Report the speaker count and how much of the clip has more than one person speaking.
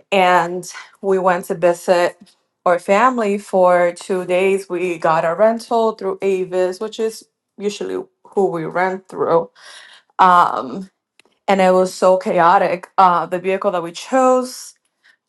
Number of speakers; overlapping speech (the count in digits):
1, no overlap